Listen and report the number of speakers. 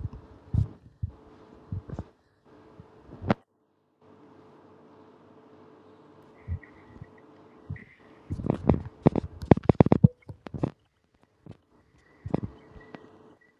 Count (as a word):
zero